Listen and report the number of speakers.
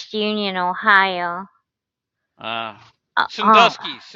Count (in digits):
2